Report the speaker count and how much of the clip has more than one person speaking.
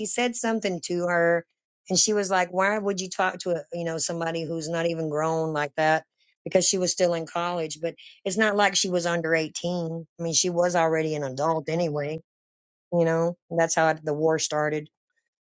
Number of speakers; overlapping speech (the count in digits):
1, no overlap